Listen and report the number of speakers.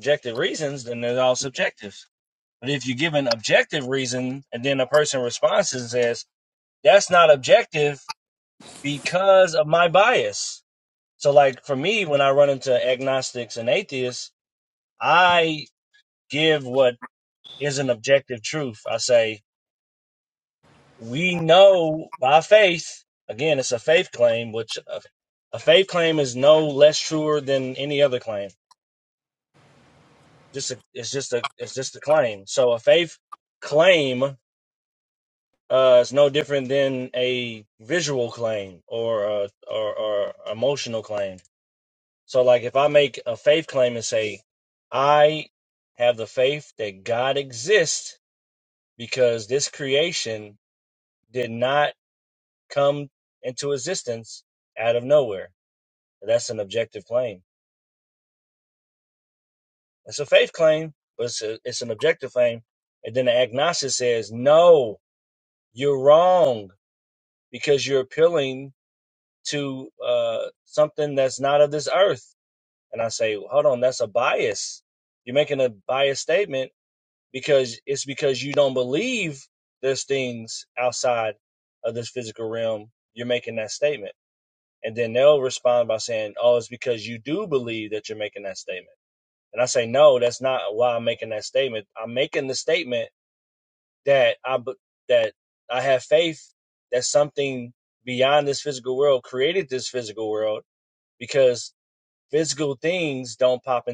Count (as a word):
one